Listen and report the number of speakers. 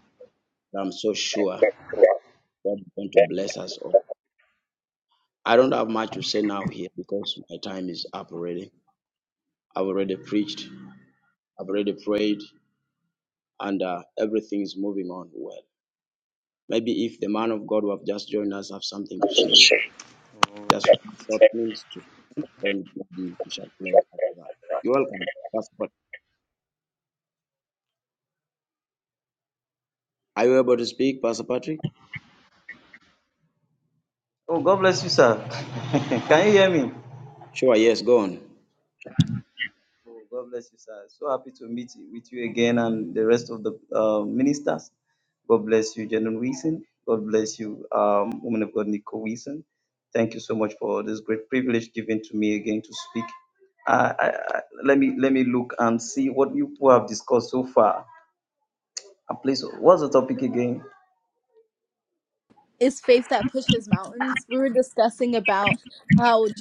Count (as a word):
three